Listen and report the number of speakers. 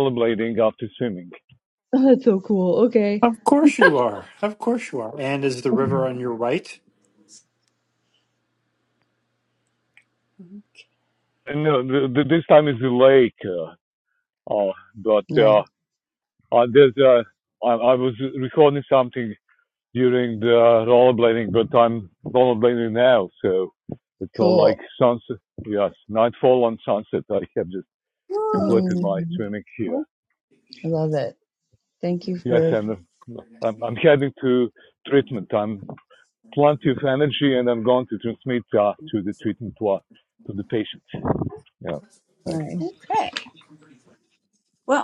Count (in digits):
4